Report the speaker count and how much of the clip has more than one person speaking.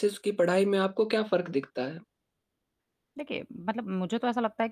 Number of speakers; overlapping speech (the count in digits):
2, no overlap